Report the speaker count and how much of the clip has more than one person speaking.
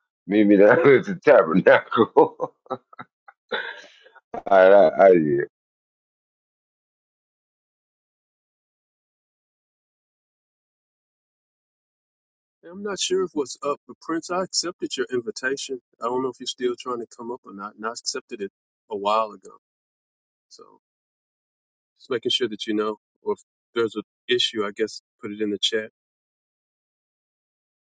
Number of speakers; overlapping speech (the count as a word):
two, no overlap